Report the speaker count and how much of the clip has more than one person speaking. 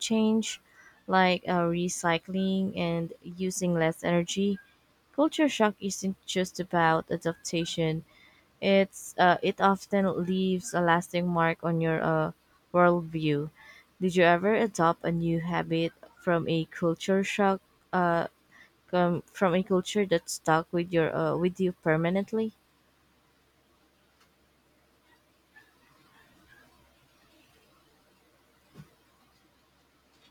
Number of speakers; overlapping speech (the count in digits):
1, no overlap